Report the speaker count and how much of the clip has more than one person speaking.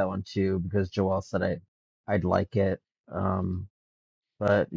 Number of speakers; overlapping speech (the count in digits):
1, no overlap